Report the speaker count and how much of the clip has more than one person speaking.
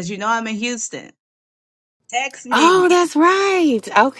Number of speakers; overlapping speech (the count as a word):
two, about 6%